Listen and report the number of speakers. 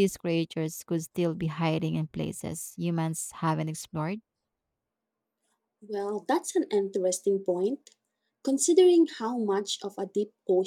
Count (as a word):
two